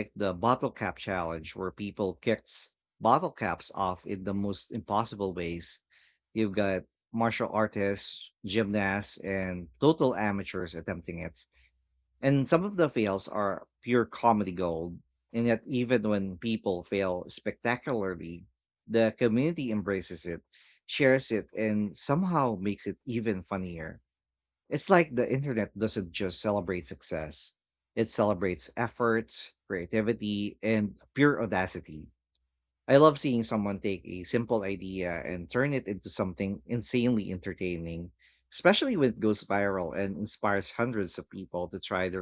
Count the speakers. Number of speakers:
1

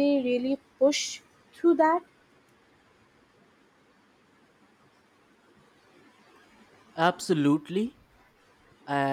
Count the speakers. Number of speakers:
2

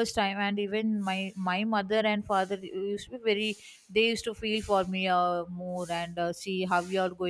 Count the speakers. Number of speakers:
1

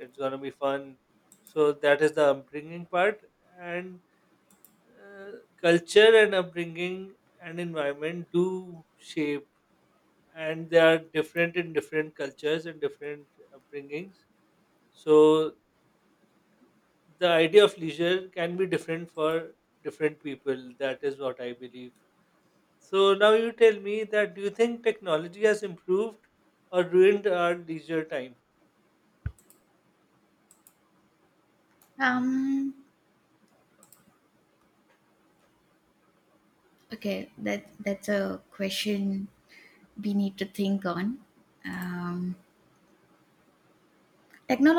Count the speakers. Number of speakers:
2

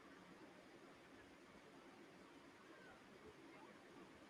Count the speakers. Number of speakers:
0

